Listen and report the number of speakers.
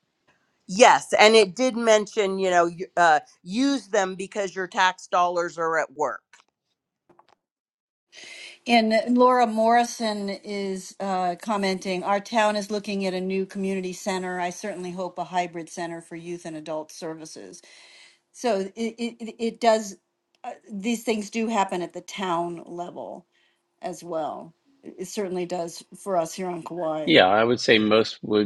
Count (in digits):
3